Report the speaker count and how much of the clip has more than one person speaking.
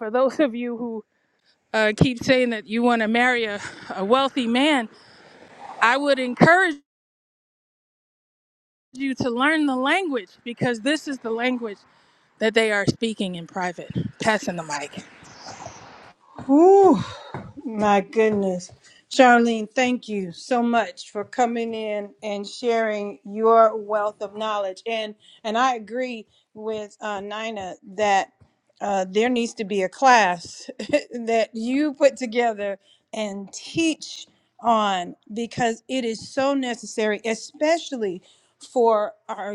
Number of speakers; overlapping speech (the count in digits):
2, no overlap